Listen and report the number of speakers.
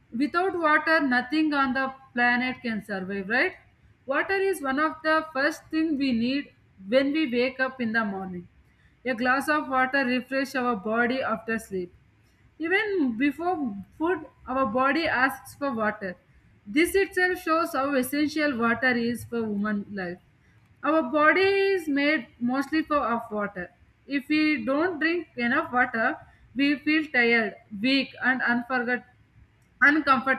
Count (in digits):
1